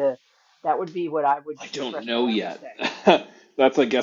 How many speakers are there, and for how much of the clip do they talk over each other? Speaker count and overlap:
2, about 25%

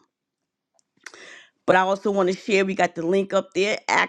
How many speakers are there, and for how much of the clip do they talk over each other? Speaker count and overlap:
1, no overlap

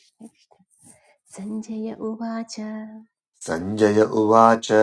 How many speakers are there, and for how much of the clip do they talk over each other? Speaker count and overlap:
2, no overlap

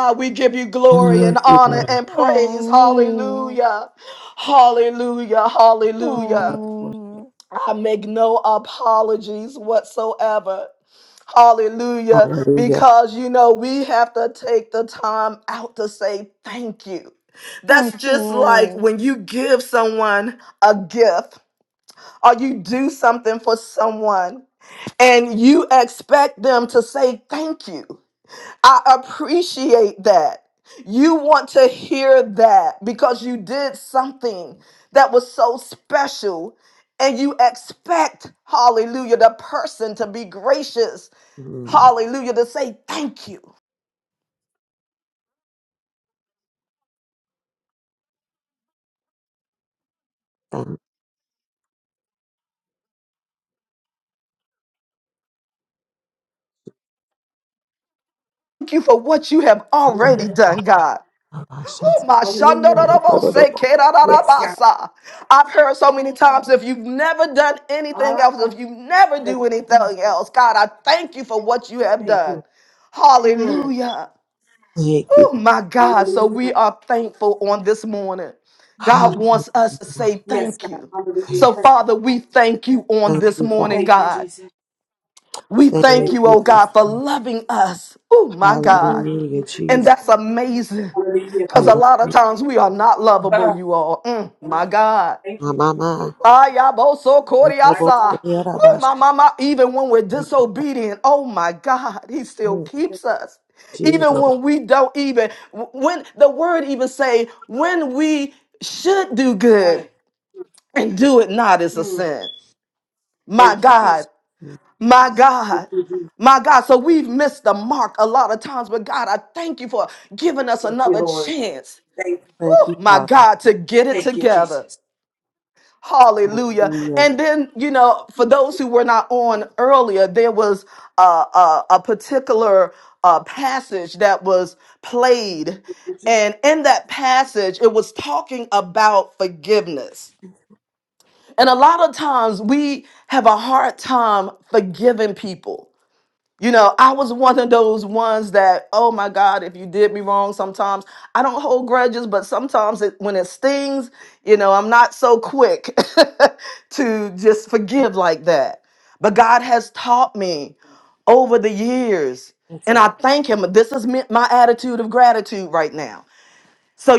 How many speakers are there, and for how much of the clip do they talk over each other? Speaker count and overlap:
4, about 12%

